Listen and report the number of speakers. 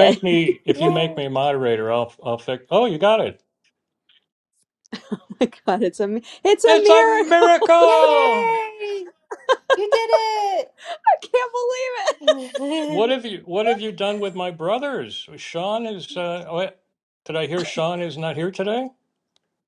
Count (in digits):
3